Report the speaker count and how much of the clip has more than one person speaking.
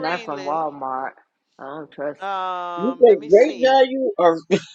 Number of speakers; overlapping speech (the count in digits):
3, about 32%